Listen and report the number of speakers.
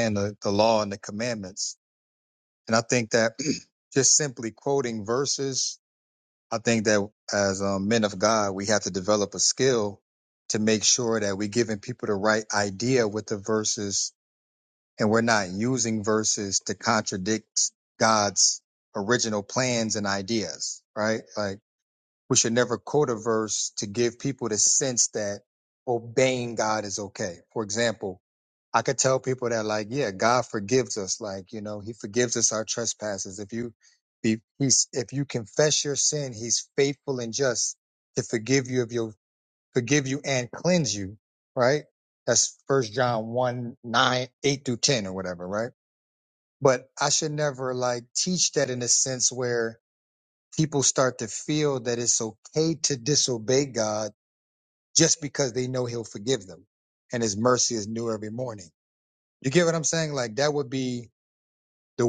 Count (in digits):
1